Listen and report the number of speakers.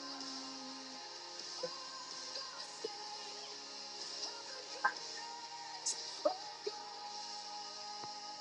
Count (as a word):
zero